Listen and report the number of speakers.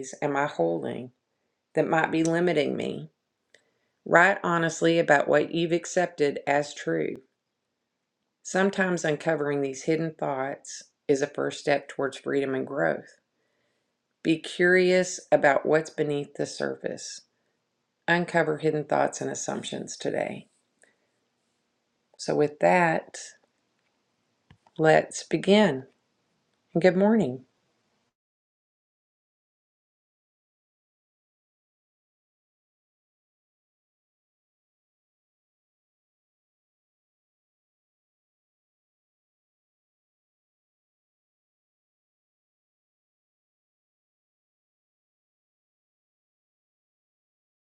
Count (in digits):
1